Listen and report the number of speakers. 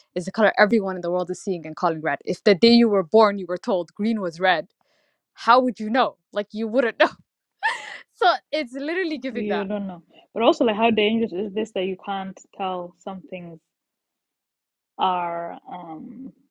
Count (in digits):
2